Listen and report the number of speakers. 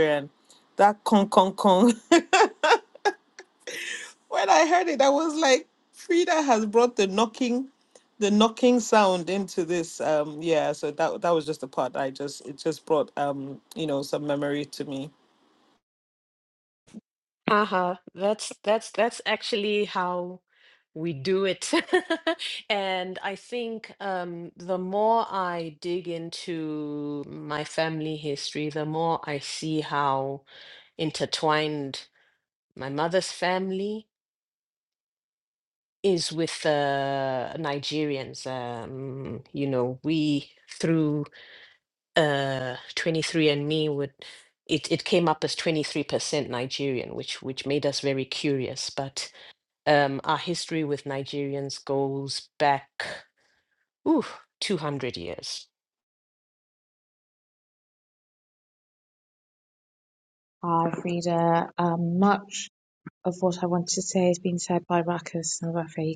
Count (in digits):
3